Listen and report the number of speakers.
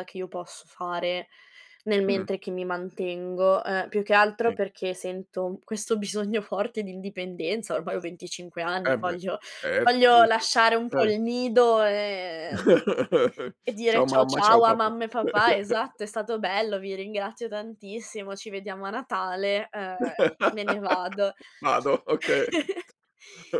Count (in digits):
2